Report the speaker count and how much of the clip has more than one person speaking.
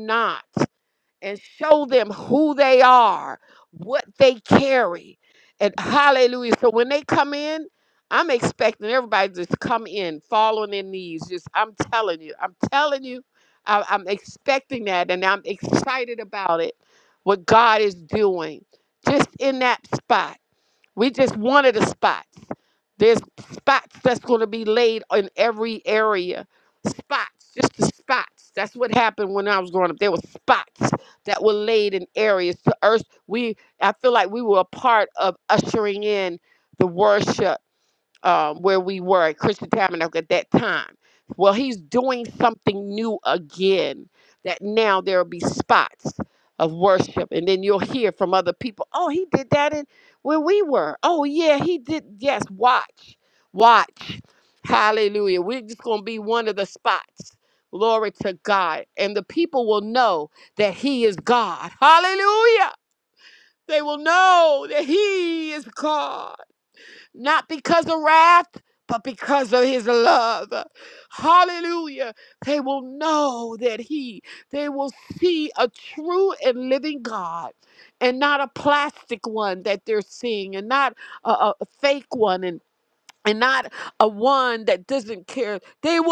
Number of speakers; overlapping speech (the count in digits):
1, no overlap